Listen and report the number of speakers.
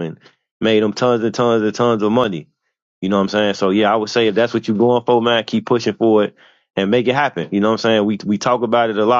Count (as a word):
one